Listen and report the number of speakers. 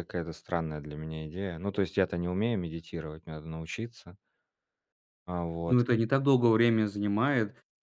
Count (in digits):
2